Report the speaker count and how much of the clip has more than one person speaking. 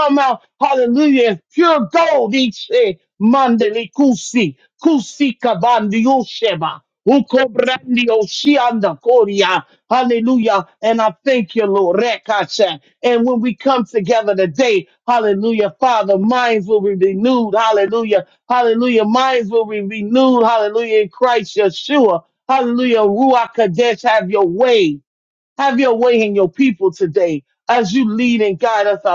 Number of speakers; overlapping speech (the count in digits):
1, no overlap